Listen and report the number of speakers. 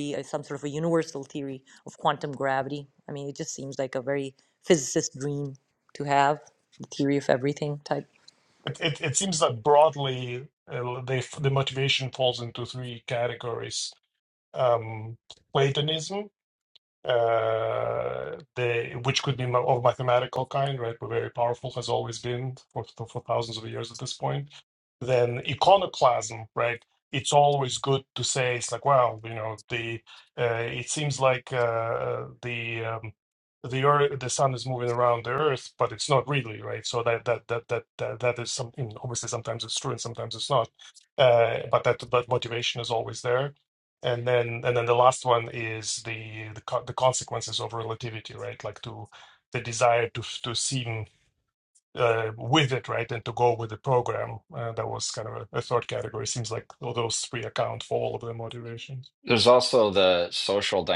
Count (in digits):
3